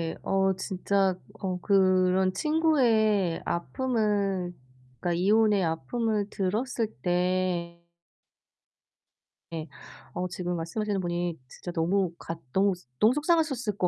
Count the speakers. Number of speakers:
1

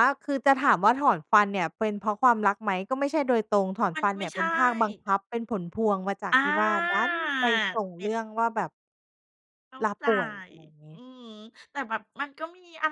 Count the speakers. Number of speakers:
2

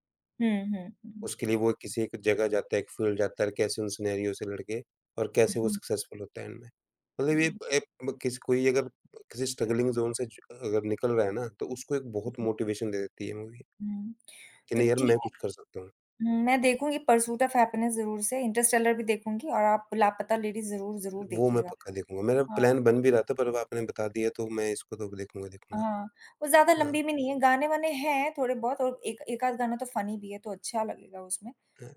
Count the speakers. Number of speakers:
2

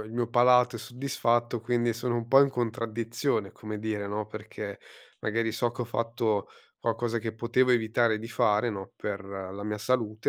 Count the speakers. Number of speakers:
1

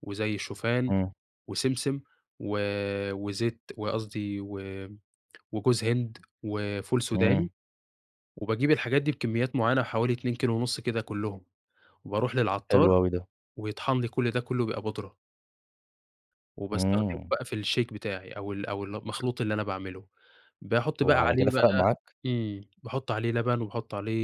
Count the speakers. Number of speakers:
2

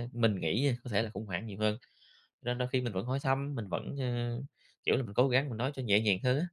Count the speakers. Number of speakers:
1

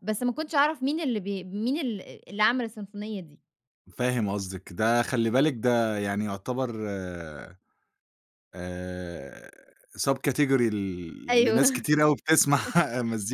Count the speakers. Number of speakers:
2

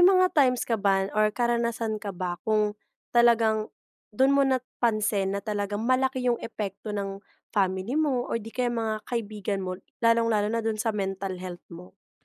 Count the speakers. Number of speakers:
1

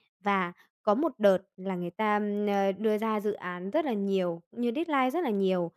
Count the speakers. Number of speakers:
1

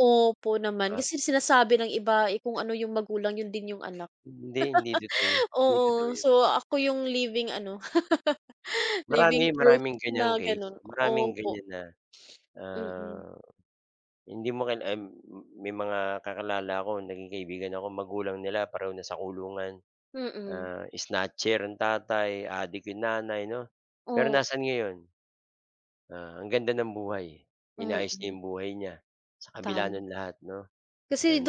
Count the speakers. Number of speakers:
2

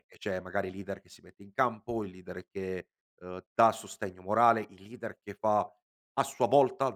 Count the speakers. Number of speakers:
1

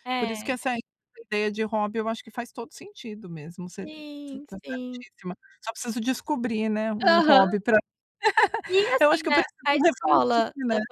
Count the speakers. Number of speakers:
2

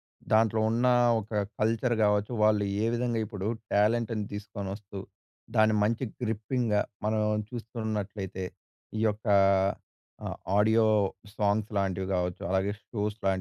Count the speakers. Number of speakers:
1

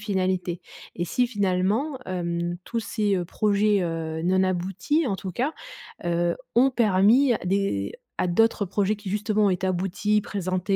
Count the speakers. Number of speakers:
1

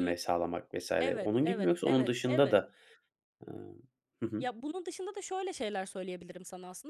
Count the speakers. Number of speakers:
2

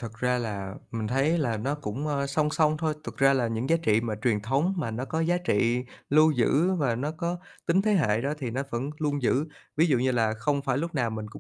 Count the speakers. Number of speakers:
1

